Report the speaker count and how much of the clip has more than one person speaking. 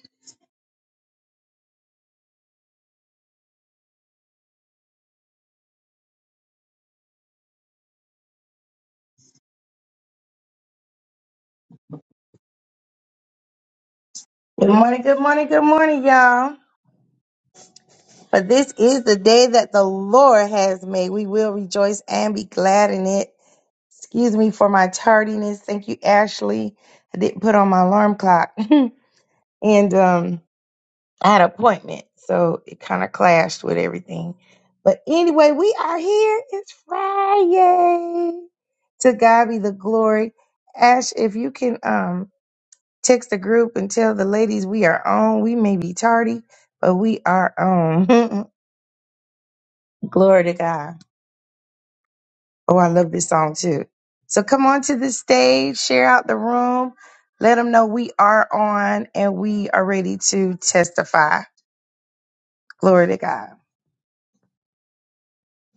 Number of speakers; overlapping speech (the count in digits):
1, no overlap